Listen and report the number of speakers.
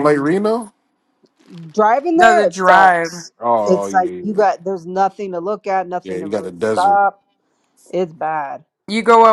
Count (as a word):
three